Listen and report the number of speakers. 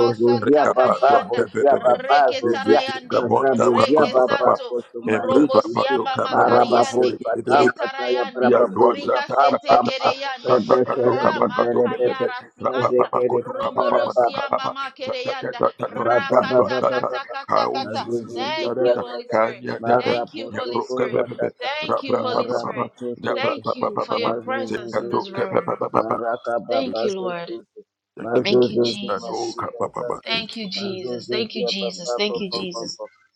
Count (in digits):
3